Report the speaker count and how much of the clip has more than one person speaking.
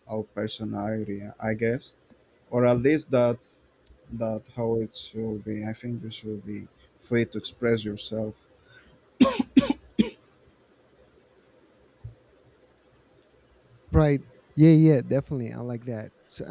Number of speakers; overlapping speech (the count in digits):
2, no overlap